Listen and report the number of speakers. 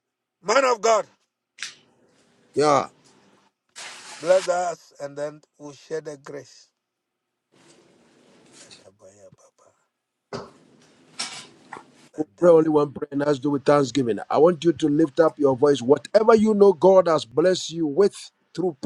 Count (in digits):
2